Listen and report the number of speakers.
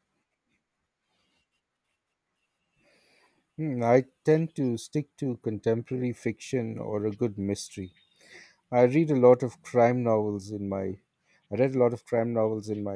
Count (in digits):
1